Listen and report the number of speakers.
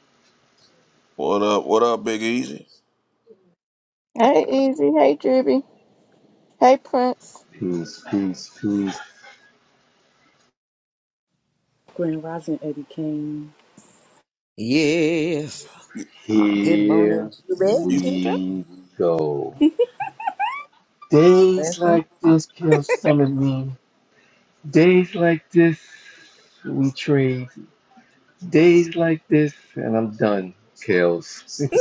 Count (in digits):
5